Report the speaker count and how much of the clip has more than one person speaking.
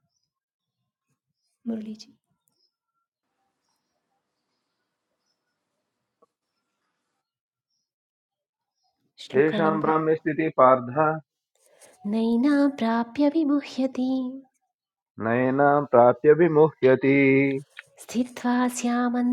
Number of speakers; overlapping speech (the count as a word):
two, about 3%